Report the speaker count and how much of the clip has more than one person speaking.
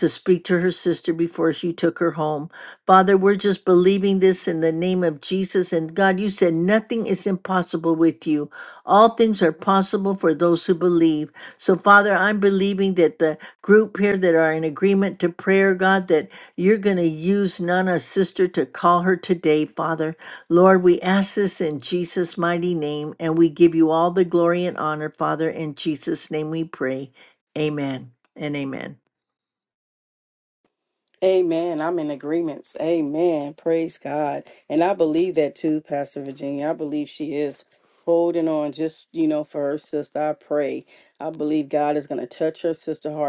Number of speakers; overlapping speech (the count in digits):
2, no overlap